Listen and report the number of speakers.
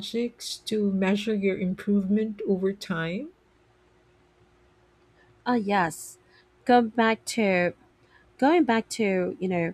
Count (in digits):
2